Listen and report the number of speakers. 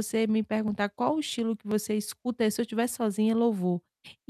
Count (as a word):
one